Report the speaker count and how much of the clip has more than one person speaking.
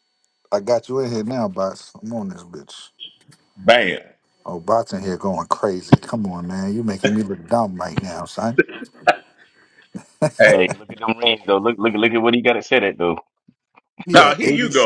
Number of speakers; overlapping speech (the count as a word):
three, about 6%